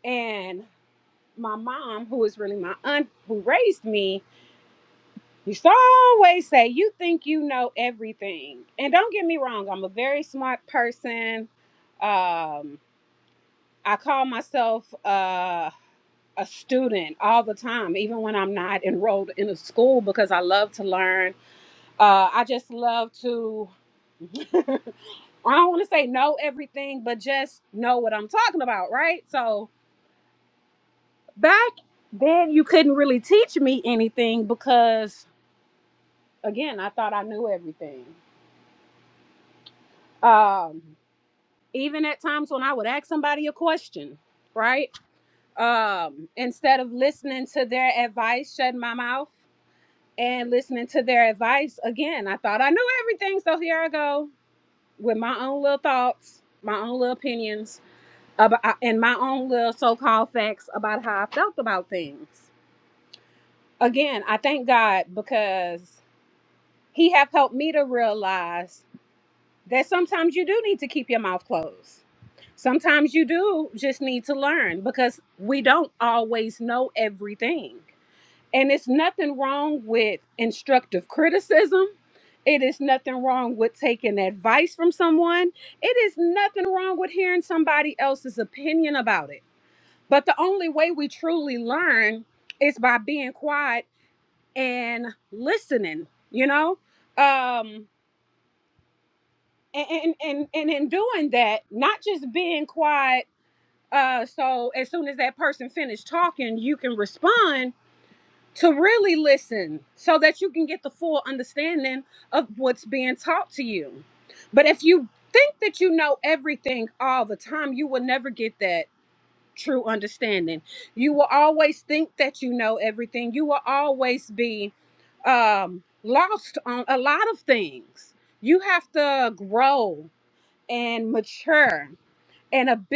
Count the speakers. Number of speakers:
one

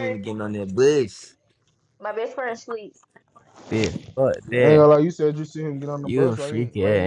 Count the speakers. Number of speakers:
four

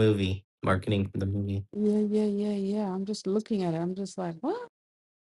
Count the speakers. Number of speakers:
two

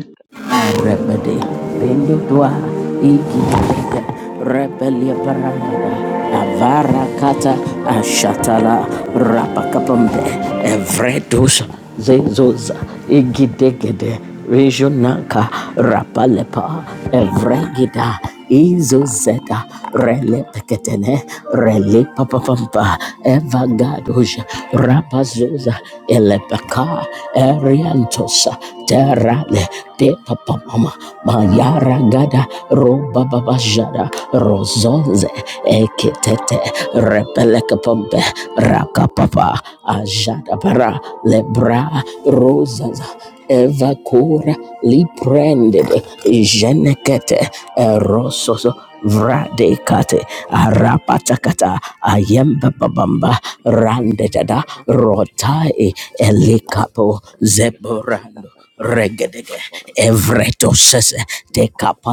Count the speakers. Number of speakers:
two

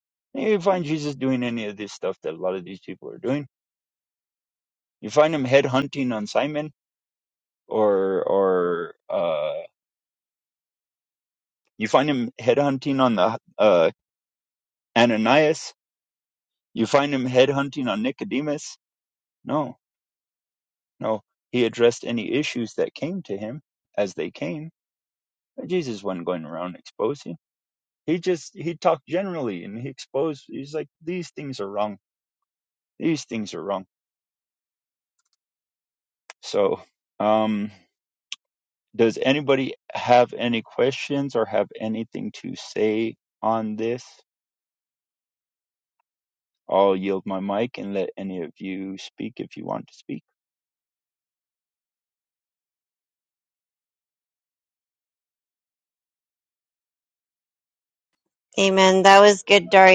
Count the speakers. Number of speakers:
two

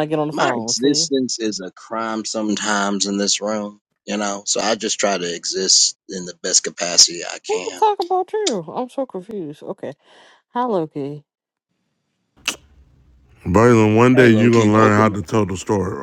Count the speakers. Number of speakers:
three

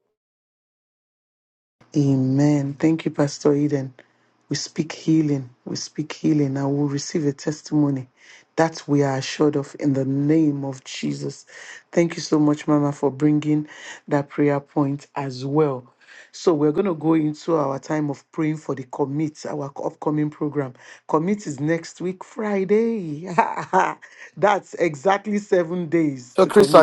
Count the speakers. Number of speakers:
one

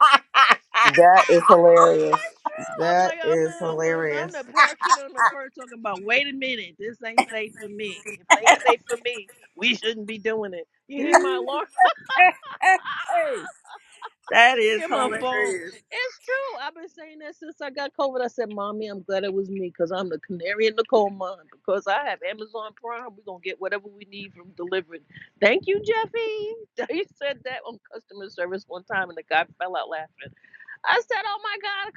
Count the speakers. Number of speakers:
three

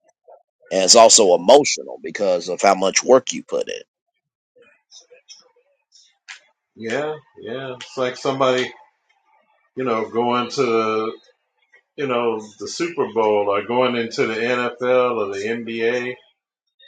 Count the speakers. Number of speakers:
two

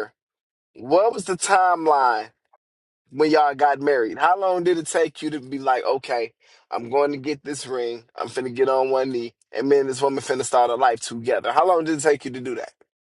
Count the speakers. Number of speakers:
one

